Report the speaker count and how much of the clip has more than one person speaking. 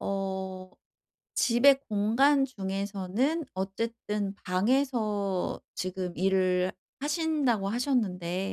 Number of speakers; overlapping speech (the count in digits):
1, no overlap